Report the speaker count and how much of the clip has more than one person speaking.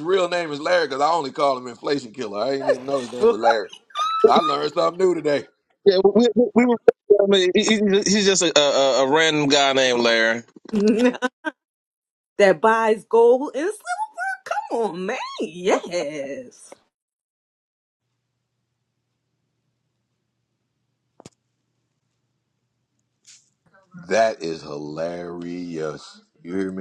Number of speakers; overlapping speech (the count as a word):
three, no overlap